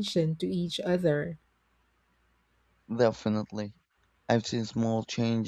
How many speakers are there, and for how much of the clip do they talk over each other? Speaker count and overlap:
2, no overlap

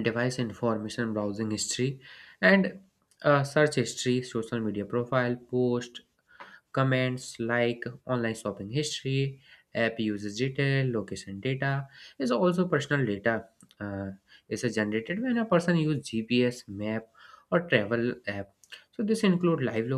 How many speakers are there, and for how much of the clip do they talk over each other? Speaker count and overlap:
1, no overlap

